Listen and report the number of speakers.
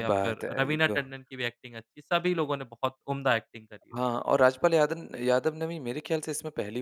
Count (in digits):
2